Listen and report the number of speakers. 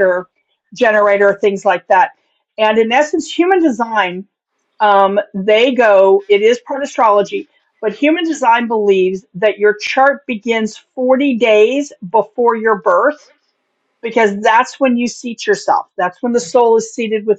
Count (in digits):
1